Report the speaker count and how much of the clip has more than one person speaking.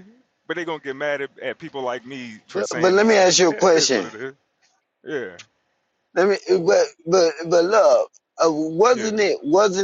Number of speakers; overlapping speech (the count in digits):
2, about 18%